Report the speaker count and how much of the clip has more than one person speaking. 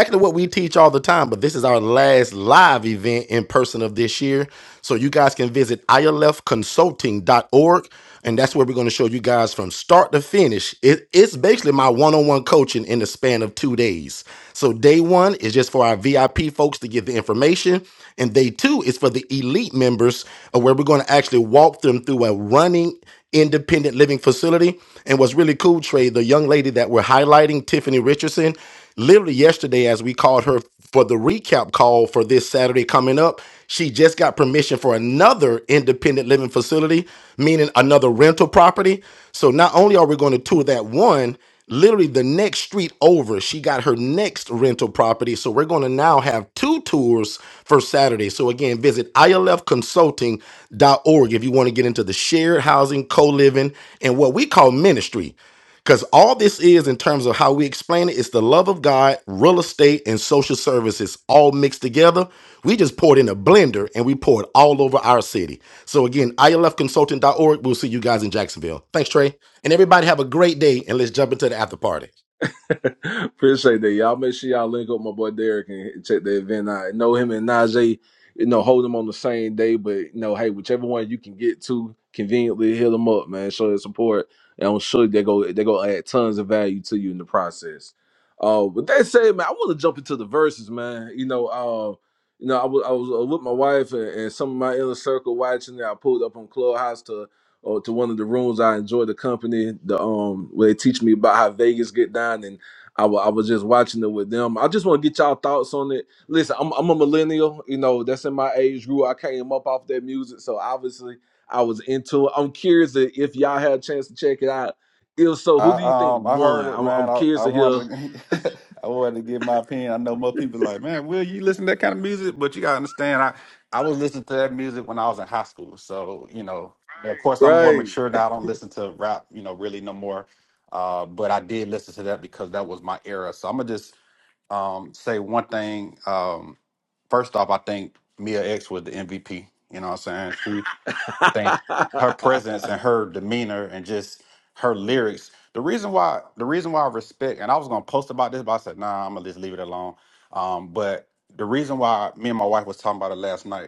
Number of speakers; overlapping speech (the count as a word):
three, about 2%